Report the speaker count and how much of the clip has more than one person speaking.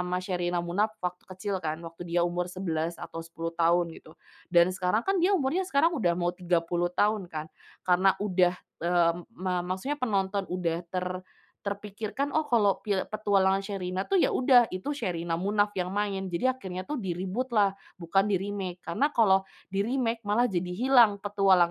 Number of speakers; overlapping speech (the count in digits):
1, no overlap